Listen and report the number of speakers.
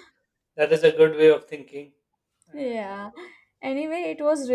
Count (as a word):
two